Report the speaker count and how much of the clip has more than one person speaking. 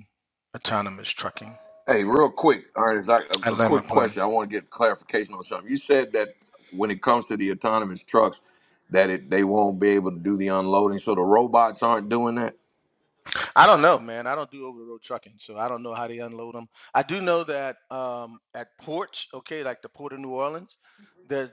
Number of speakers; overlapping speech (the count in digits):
2, about 3%